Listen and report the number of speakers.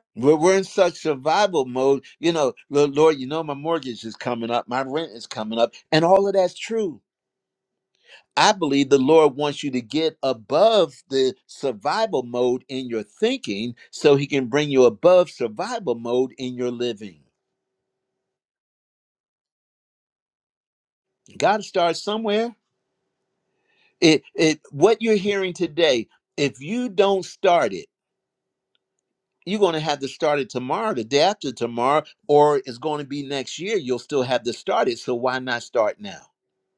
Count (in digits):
1